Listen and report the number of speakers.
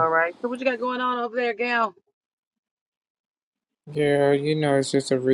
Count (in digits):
2